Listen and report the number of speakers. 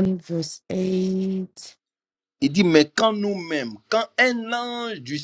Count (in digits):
2